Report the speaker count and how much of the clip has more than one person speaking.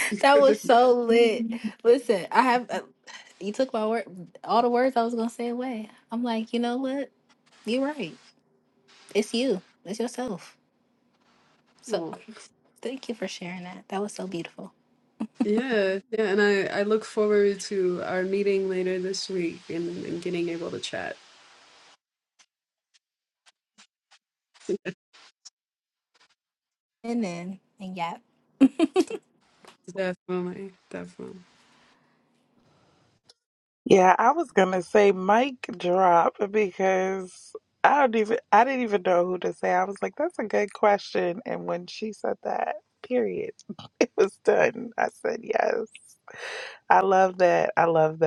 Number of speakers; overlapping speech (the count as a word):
three, under 1%